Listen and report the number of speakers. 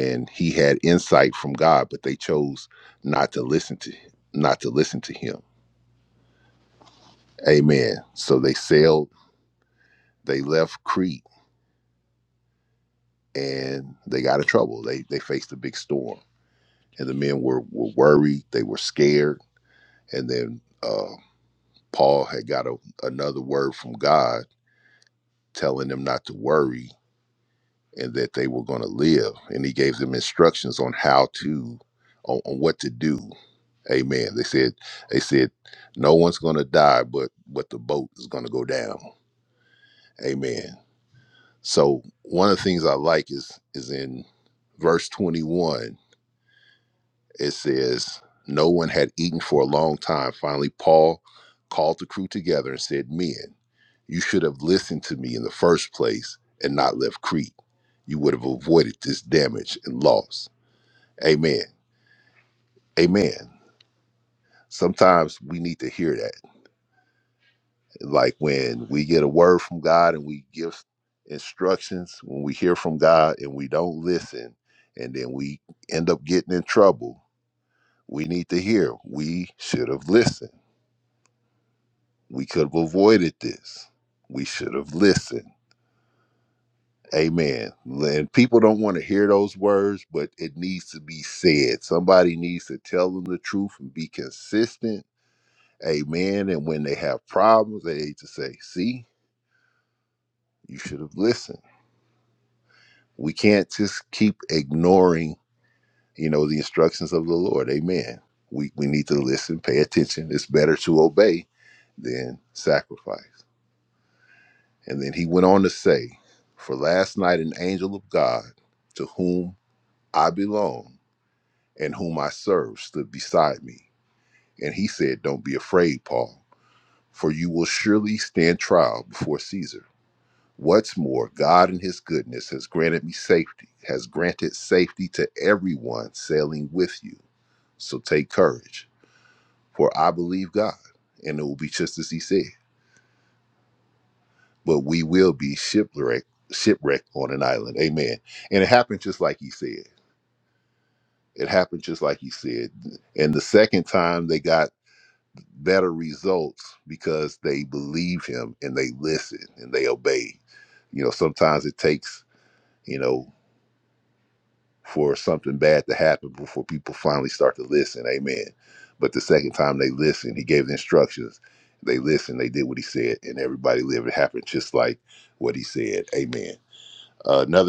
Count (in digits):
1